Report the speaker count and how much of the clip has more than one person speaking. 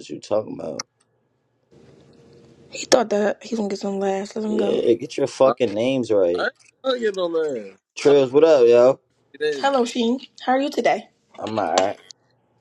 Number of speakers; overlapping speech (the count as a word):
three, about 7%